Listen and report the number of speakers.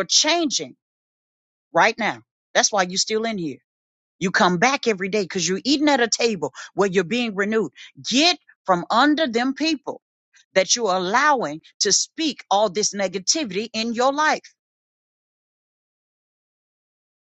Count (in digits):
1